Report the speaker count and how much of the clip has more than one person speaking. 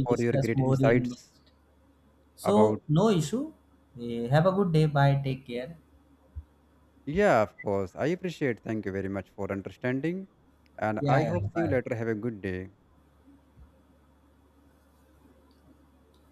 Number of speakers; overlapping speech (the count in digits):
2, about 13%